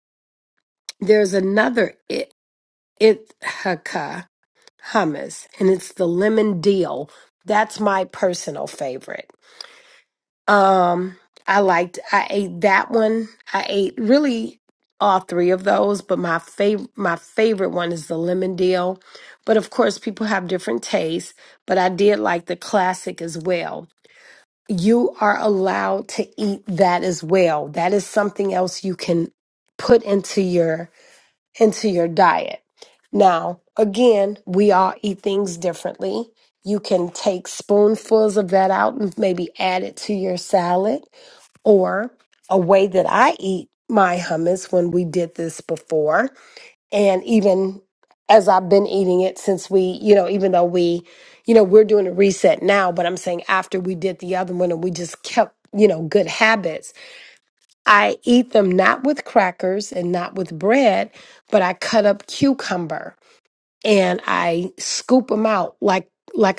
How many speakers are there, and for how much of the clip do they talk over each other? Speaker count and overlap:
one, no overlap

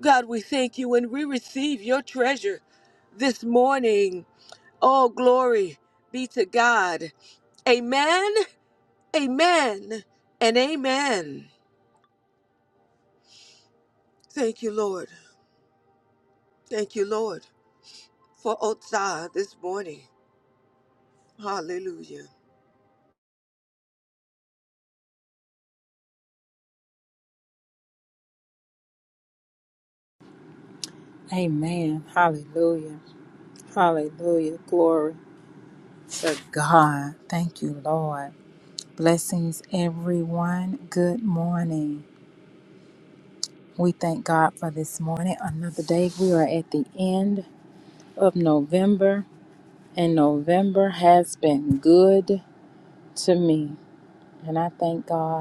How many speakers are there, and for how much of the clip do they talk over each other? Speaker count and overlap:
two, no overlap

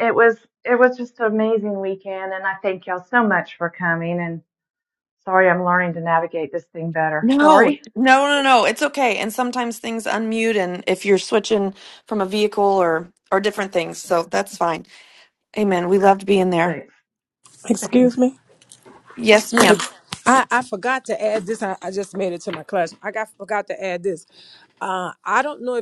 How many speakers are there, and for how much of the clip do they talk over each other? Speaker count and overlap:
three, about 3%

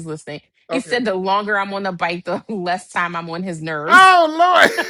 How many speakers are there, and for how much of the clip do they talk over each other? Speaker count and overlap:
two, about 9%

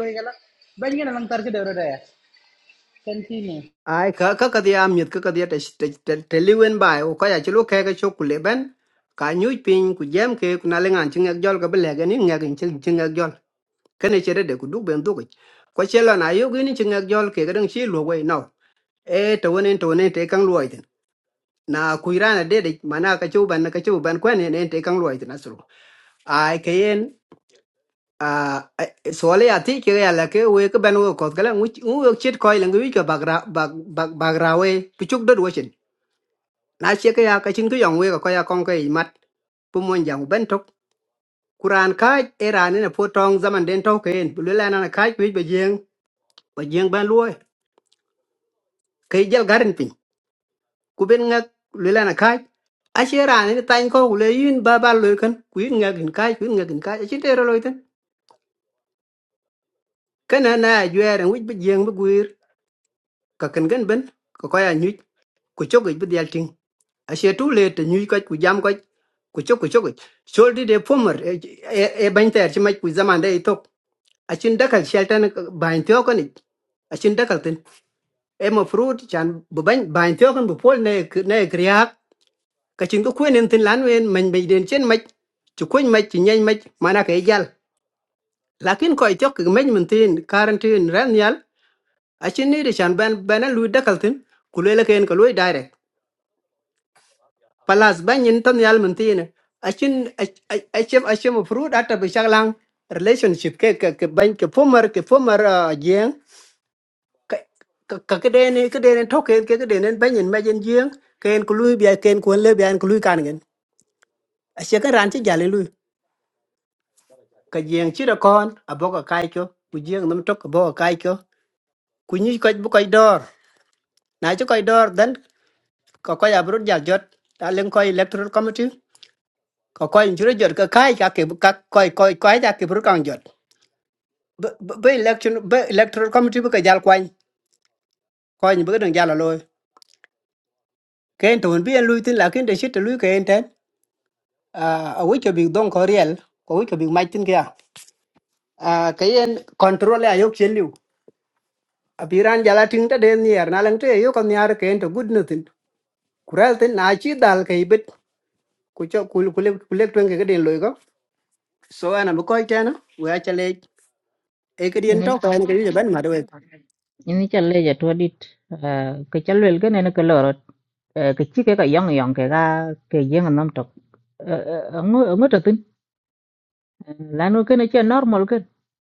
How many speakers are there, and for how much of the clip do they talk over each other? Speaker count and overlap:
three, under 1%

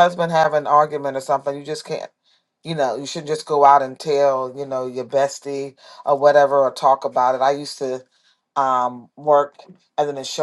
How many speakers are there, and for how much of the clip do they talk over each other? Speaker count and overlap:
one, no overlap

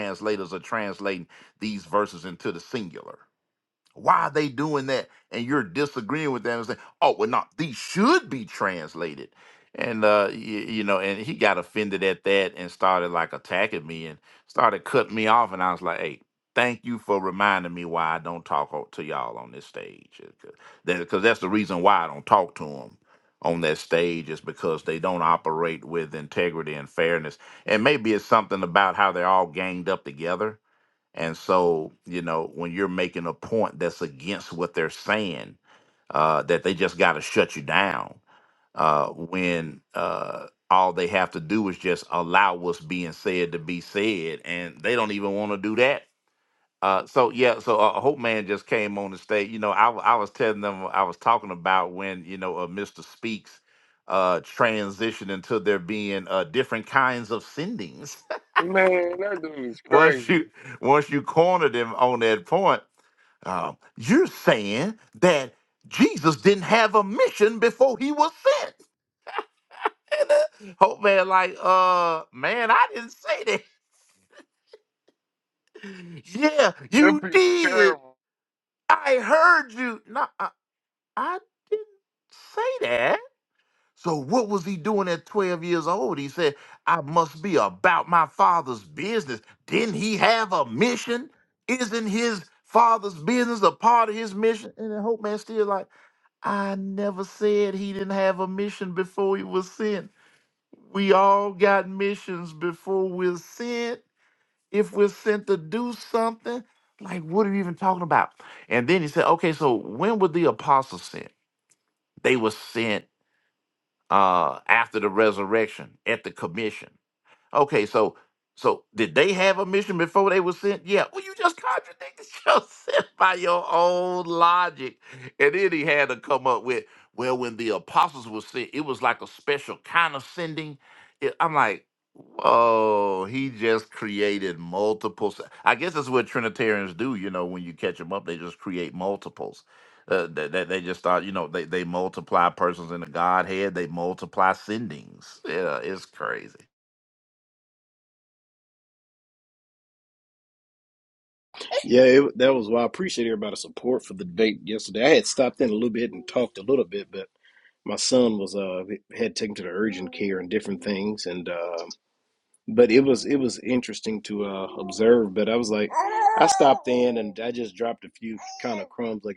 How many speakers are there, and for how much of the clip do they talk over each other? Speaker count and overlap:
three, about 1%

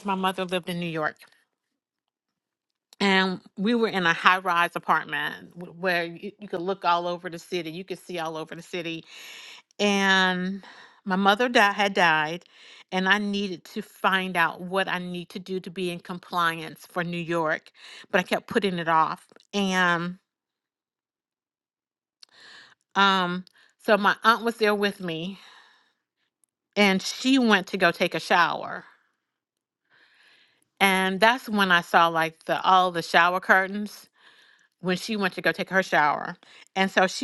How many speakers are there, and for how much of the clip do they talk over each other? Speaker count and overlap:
one, no overlap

